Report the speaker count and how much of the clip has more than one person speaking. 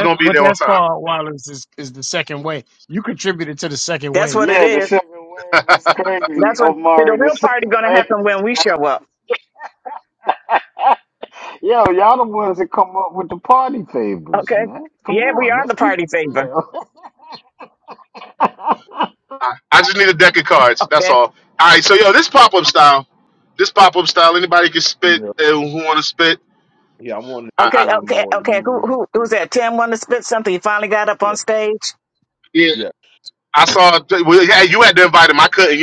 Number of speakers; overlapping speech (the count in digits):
5, about 22%